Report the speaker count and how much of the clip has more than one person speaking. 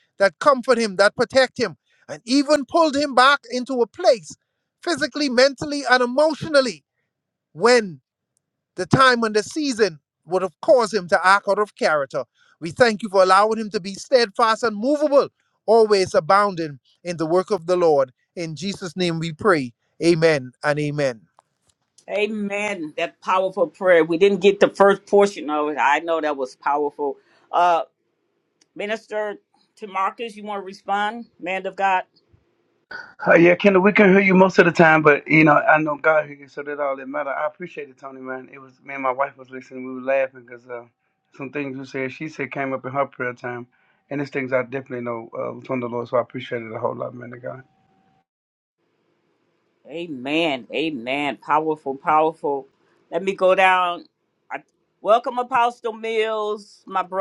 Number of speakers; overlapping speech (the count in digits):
3, no overlap